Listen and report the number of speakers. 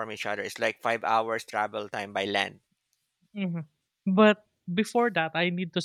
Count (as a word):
two